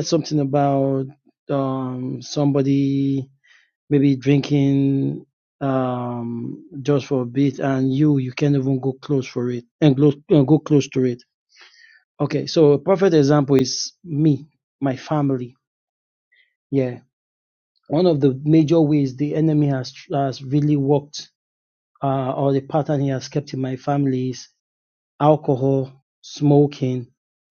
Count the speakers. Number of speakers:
1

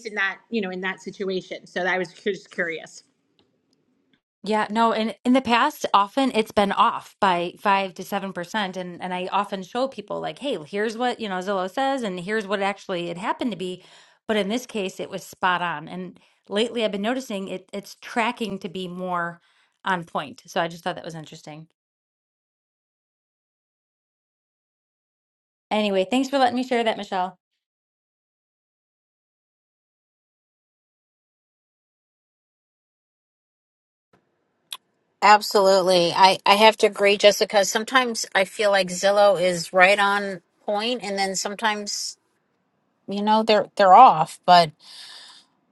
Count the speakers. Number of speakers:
3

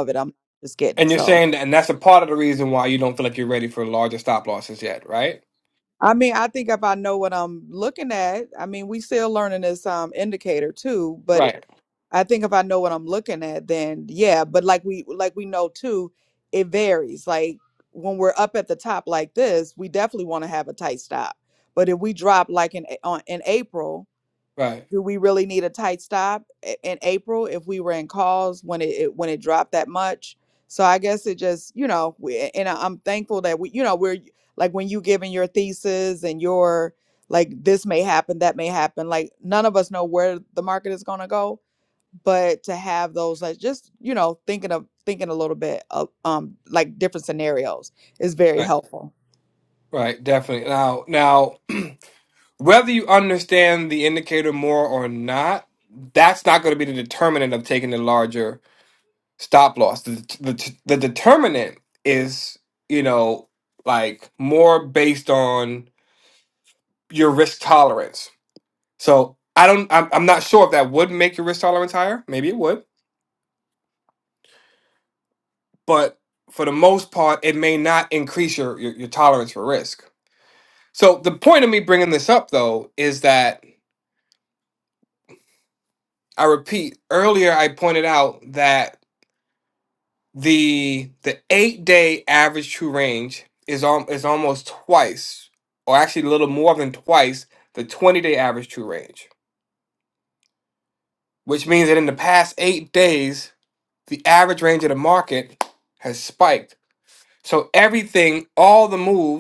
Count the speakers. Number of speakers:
2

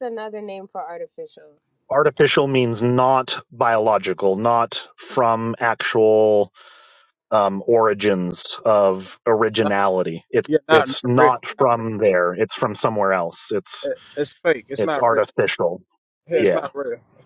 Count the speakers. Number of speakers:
3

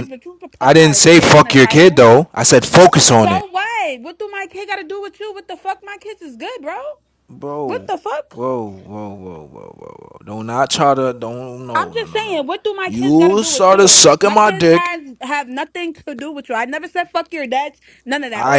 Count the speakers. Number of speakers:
2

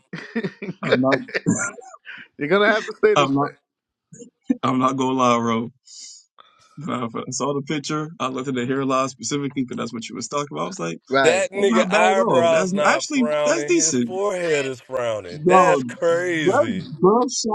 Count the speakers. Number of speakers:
3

